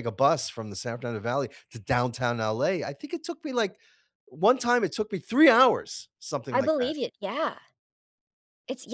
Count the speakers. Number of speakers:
2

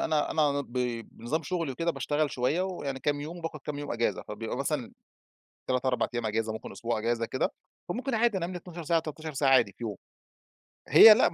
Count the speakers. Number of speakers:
1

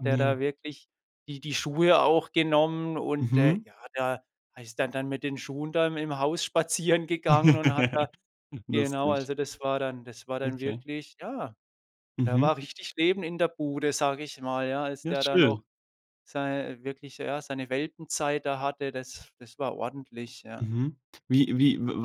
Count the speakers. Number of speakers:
2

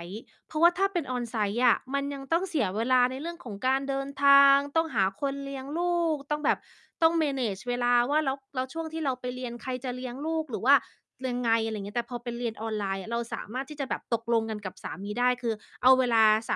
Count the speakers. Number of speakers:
1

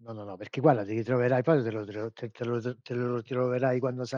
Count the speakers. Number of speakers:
1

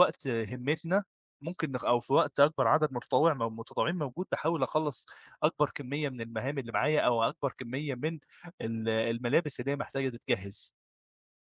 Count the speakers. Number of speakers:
1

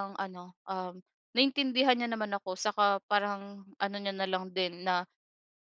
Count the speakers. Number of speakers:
1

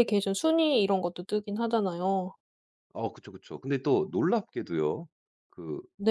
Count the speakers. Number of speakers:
2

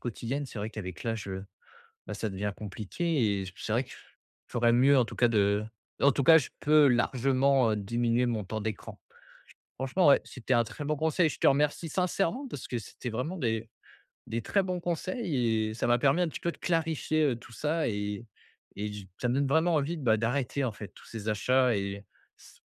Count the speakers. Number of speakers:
1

